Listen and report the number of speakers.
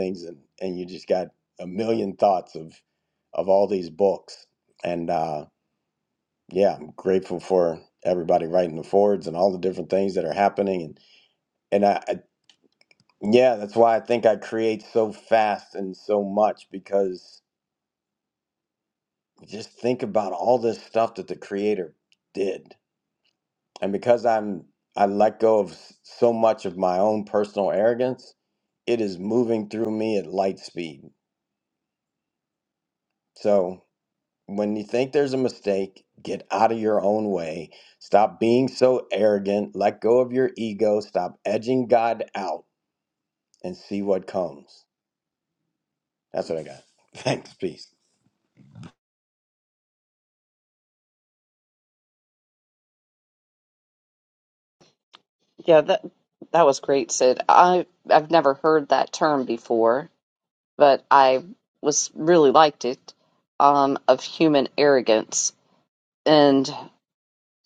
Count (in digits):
2